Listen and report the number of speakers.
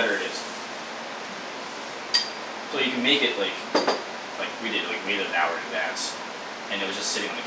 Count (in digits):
1